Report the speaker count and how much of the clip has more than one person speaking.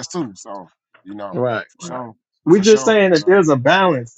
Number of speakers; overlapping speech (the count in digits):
2, about 23%